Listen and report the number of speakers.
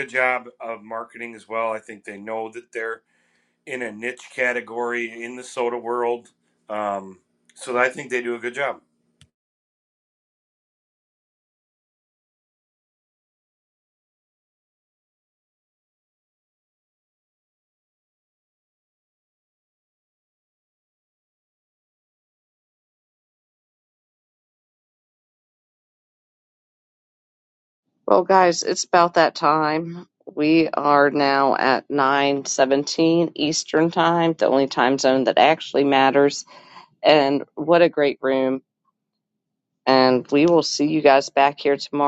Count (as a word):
two